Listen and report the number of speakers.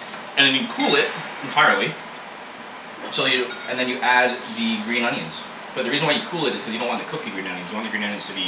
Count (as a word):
one